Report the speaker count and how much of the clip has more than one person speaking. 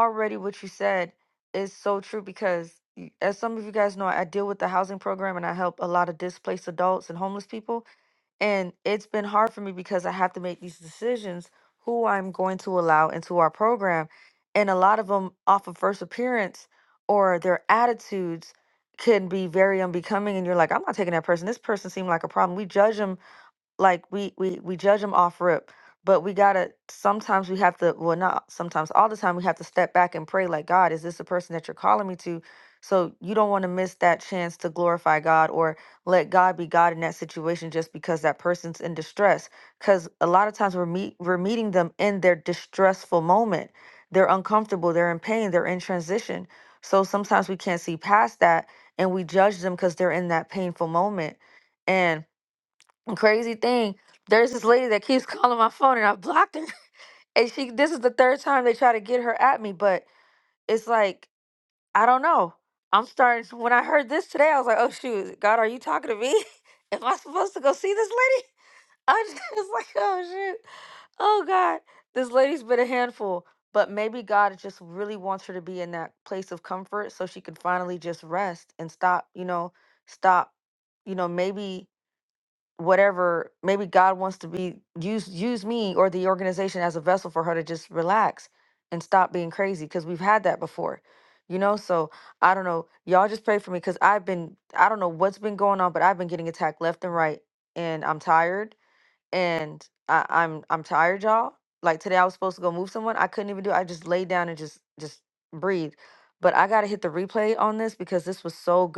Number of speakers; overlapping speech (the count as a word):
one, no overlap